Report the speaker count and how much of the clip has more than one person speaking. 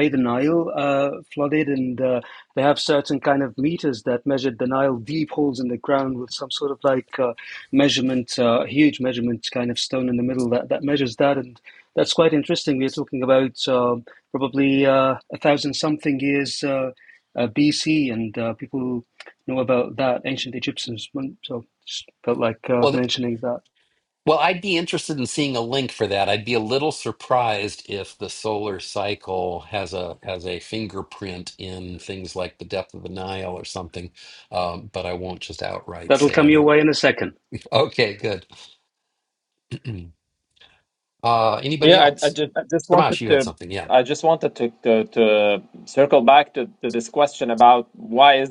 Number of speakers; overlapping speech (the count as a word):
three, about 4%